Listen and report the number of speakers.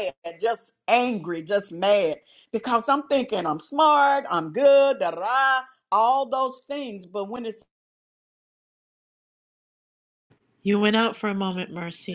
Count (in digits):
2